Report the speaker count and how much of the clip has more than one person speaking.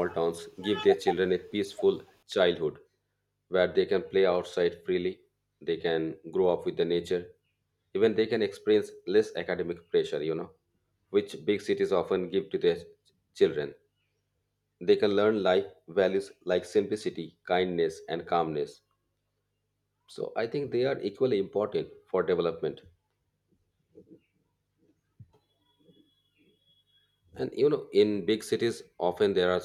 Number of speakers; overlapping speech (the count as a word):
one, no overlap